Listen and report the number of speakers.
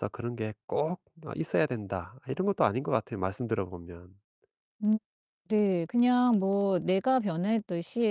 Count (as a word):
two